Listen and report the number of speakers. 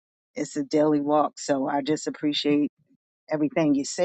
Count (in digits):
1